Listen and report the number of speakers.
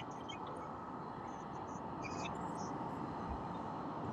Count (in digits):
0